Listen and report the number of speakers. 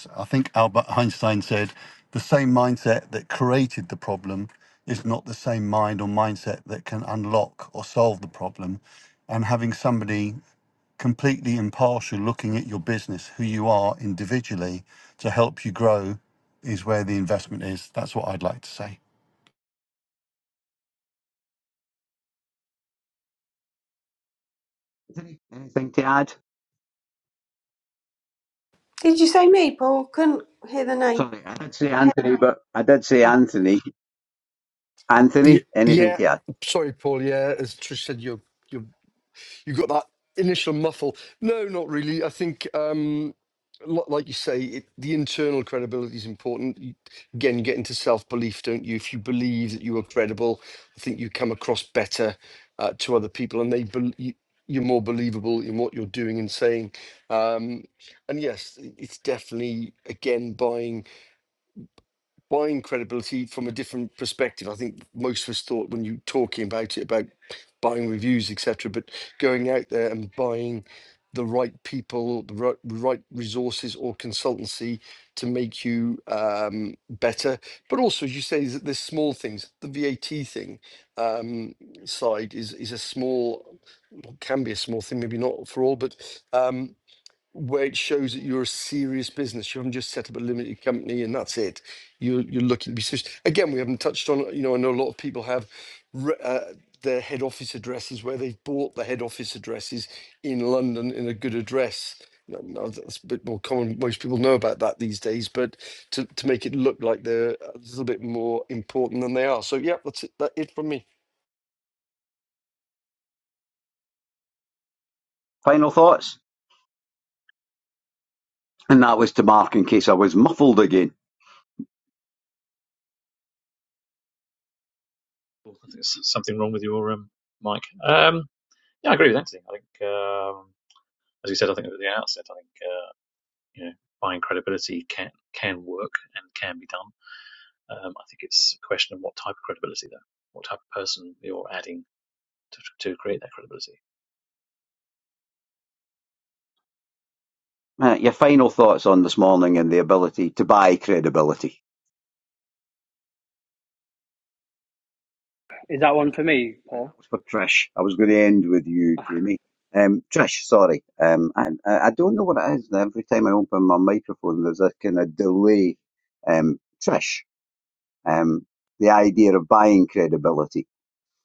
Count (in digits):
6